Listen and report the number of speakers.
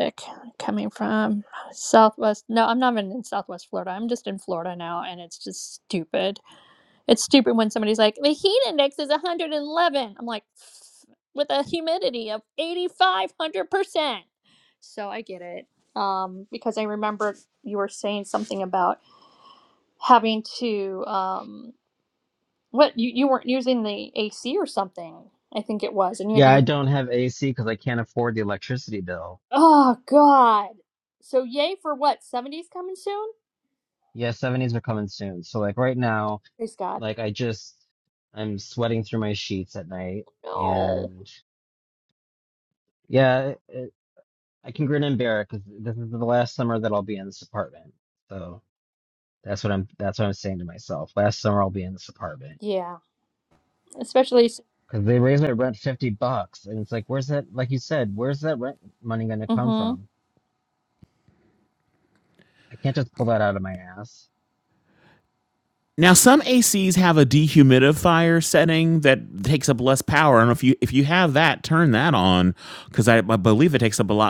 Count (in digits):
3